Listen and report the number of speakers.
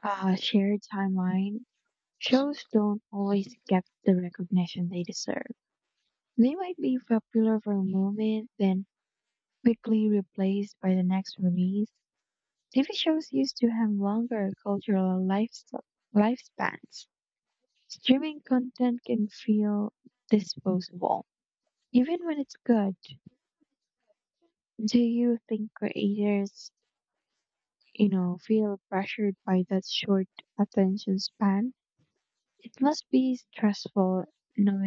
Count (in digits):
1